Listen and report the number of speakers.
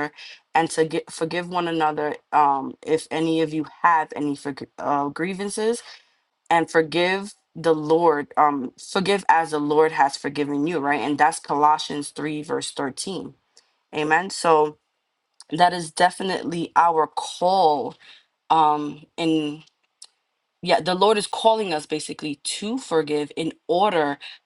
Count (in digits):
1